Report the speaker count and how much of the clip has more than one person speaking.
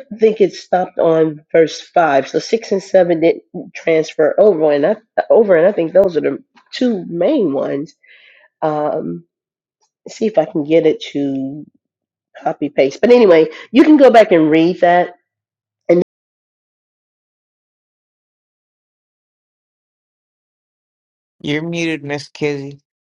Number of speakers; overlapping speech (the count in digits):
2, no overlap